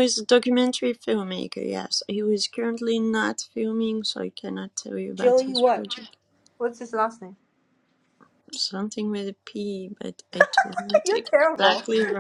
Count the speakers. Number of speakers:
2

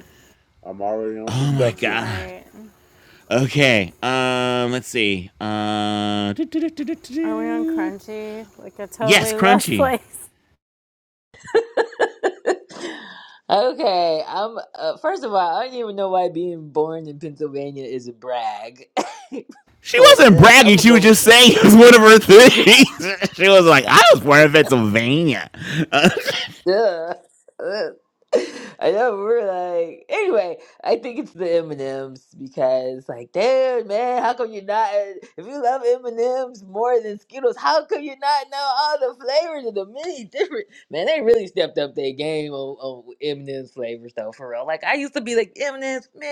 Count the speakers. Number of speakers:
4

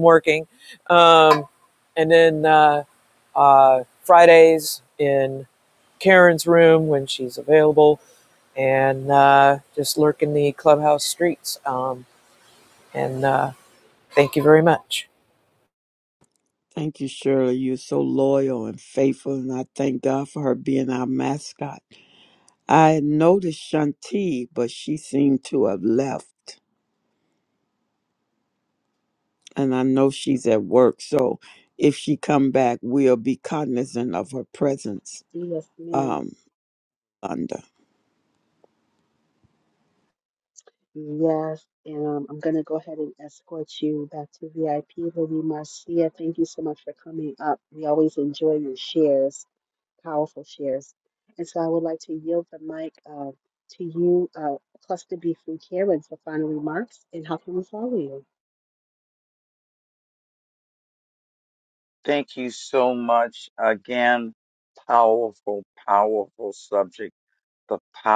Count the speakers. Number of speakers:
4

